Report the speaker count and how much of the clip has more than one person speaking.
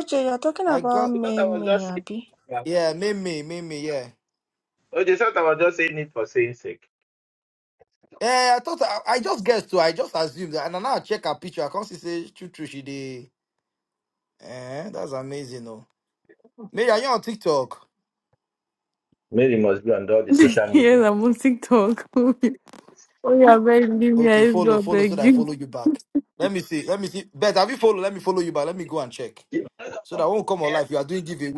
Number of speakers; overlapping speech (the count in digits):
4, about 13%